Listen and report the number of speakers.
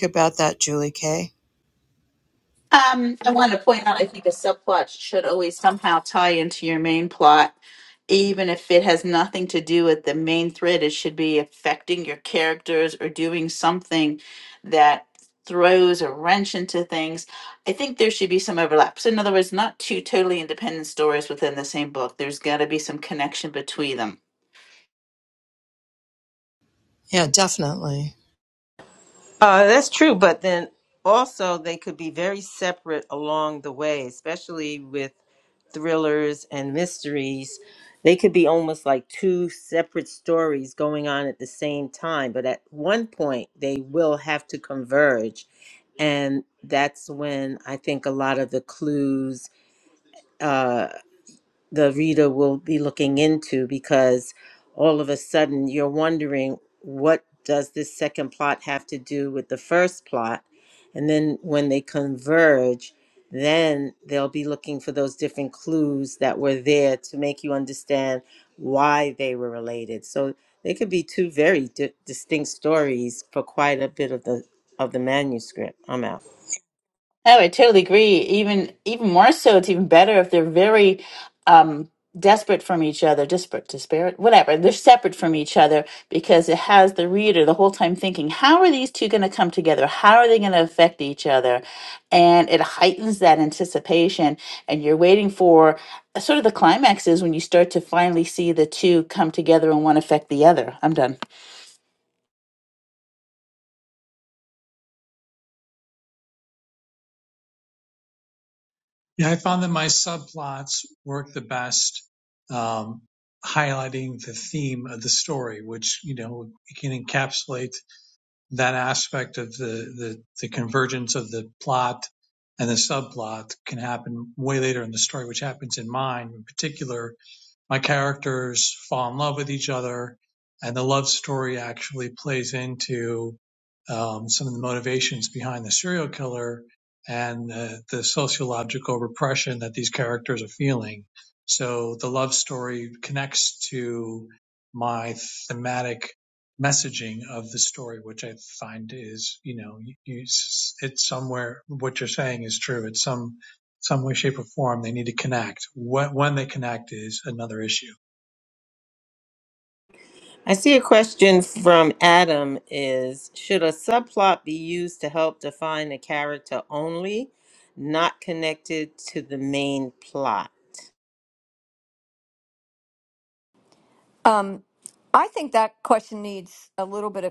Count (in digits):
5